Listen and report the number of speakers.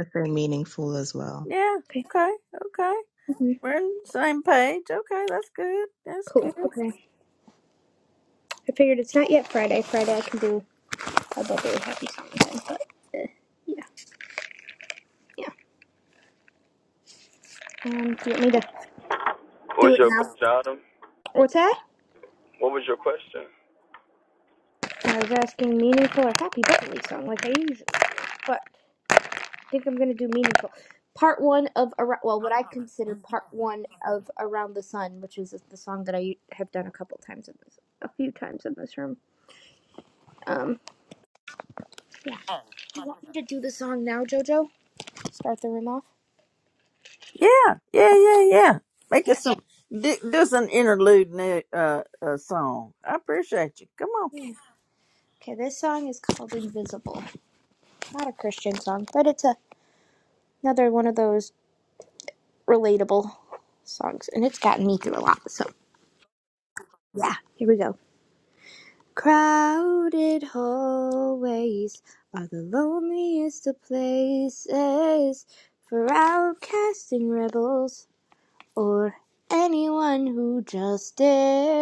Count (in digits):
4